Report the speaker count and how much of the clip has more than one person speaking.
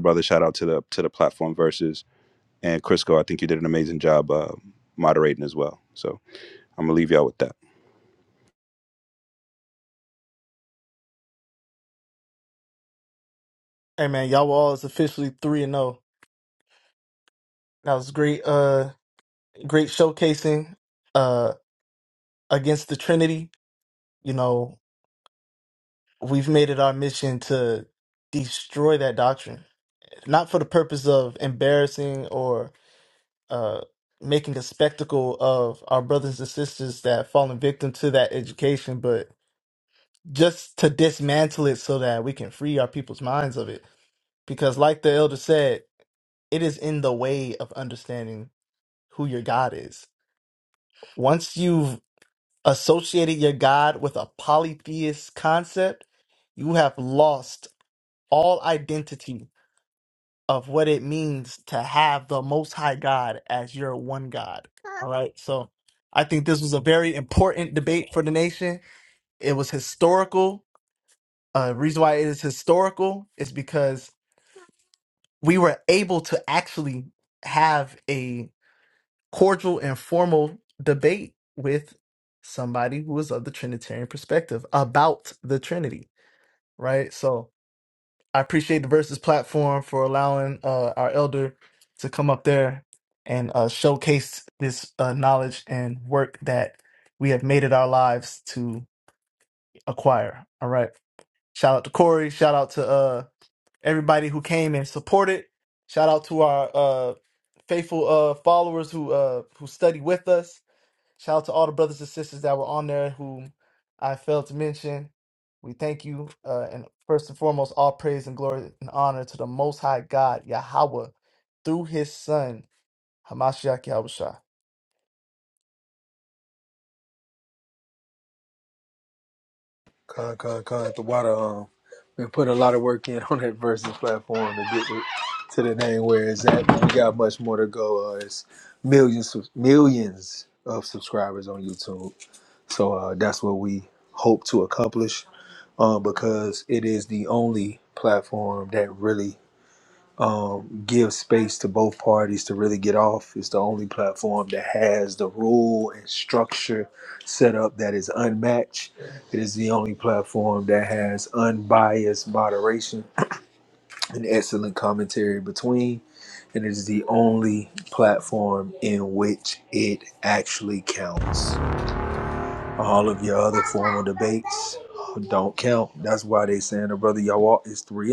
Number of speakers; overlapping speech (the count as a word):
three, no overlap